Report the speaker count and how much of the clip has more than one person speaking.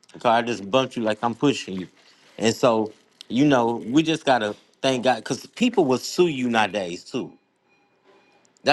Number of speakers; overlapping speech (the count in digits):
1, no overlap